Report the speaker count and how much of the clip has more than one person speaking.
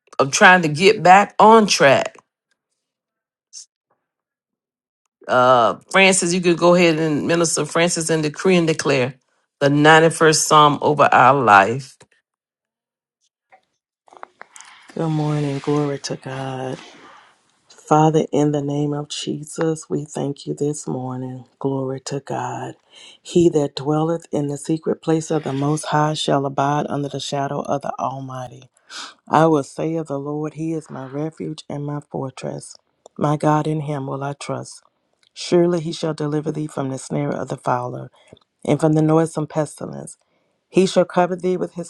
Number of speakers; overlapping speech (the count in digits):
2, no overlap